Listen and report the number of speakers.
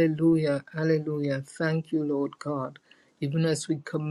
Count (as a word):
one